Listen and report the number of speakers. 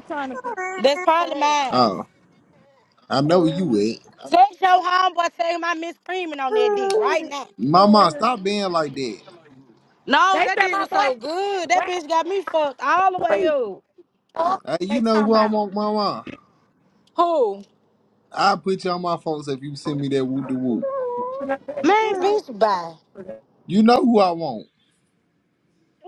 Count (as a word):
three